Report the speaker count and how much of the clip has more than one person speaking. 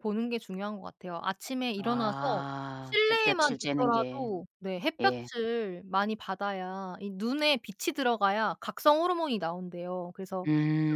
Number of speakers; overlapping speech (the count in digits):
2, about 22%